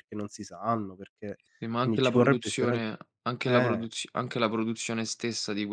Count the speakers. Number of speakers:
two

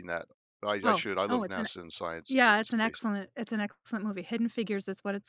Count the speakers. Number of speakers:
two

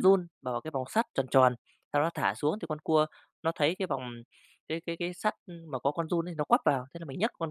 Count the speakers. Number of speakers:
one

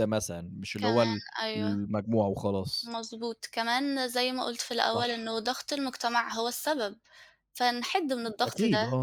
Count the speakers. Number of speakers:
two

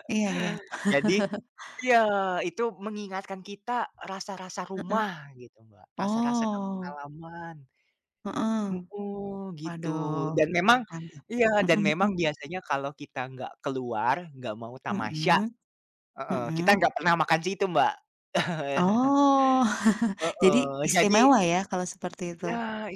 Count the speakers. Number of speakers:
two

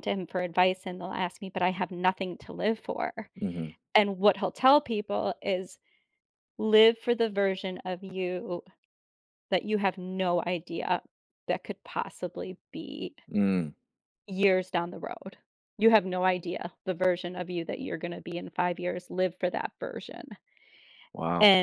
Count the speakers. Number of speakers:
two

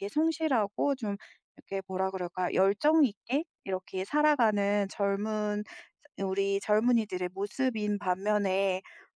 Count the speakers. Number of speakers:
one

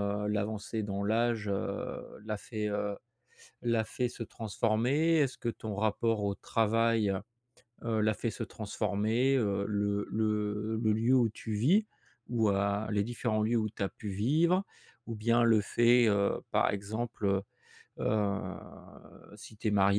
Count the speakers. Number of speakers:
one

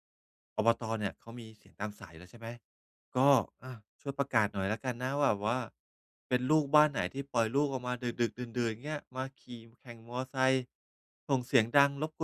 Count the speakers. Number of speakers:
one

